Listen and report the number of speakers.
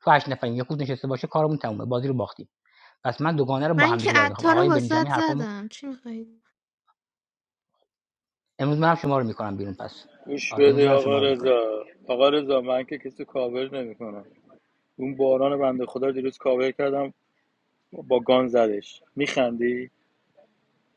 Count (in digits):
3